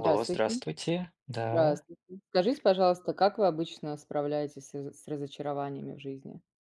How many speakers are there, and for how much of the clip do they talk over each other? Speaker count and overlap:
two, about 13%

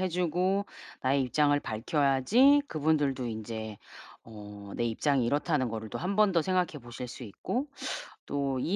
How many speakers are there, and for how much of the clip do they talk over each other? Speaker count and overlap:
one, no overlap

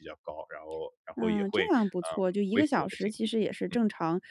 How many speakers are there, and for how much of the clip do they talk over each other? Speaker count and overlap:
two, about 41%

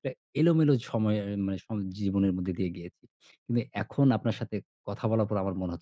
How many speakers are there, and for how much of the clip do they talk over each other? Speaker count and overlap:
one, no overlap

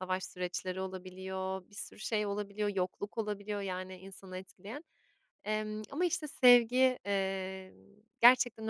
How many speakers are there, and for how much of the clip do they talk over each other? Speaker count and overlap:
one, no overlap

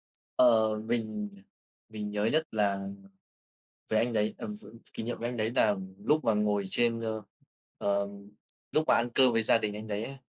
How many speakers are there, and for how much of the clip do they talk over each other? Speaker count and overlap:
one, no overlap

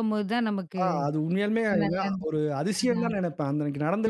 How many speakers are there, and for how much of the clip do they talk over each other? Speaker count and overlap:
two, about 24%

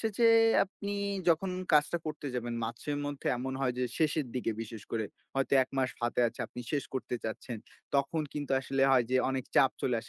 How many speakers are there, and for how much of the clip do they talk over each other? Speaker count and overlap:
one, no overlap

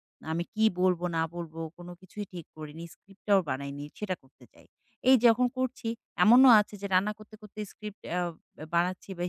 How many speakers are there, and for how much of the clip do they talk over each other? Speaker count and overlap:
one, no overlap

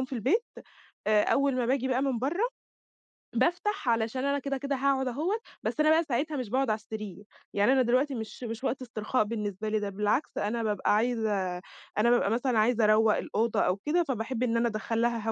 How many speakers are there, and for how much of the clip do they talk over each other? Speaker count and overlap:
one, no overlap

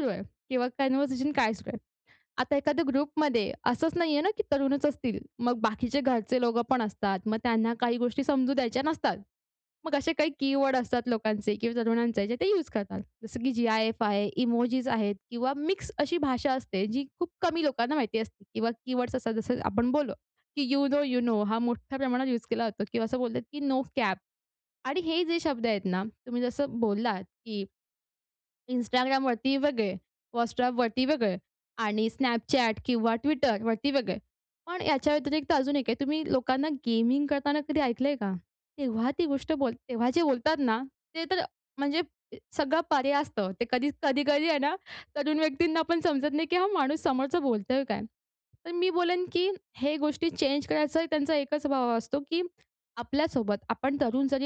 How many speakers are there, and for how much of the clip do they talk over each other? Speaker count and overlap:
one, no overlap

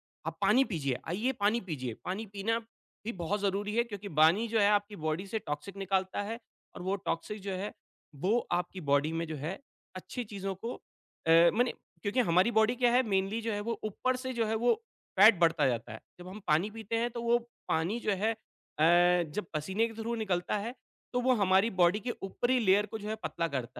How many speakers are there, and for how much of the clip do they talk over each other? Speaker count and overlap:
one, no overlap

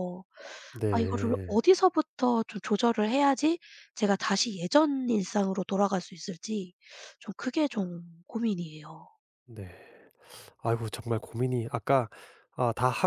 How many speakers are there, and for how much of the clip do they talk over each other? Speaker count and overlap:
two, about 5%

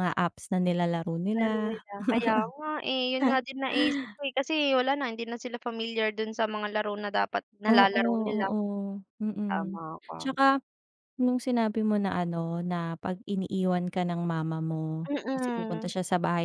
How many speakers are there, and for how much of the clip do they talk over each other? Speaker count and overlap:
two, about 15%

